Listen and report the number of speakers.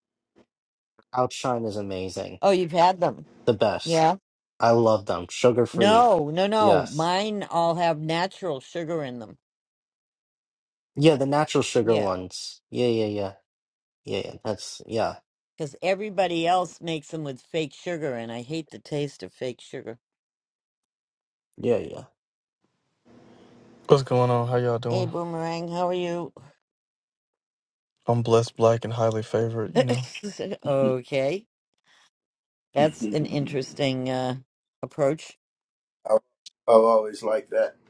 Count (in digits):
4